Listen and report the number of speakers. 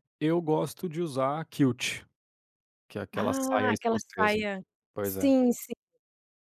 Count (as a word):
two